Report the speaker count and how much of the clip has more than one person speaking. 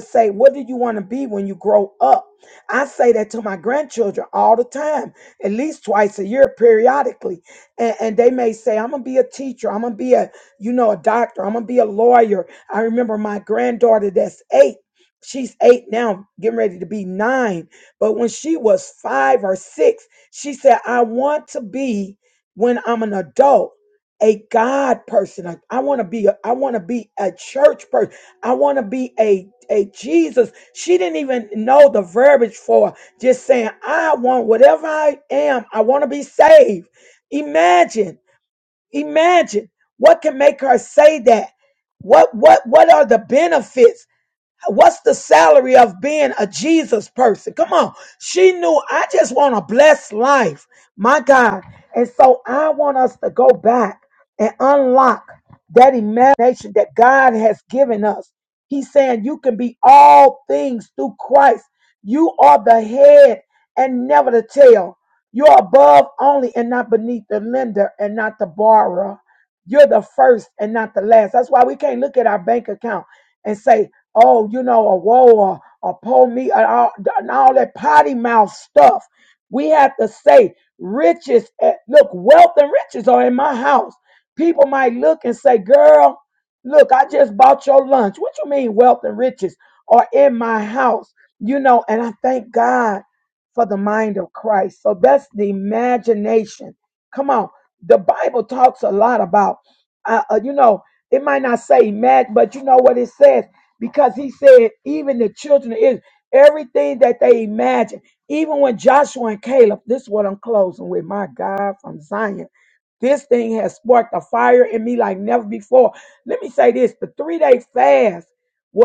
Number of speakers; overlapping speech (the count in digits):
1, no overlap